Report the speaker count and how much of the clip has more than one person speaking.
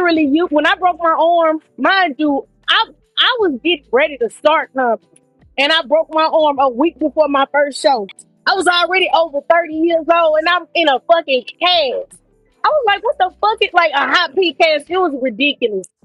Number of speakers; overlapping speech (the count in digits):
1, no overlap